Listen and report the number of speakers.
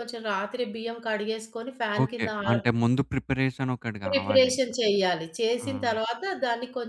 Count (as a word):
two